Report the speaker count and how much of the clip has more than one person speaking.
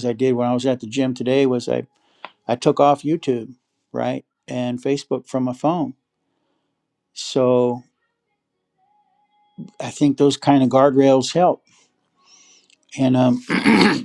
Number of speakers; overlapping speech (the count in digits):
1, no overlap